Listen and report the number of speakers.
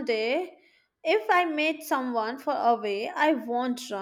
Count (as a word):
one